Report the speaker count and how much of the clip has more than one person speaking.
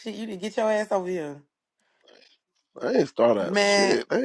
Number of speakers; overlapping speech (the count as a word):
two, about 13%